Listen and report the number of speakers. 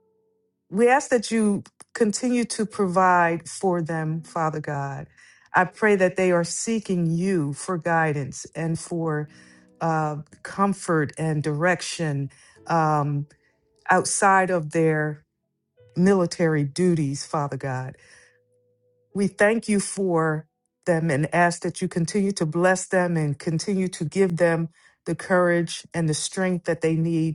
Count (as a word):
one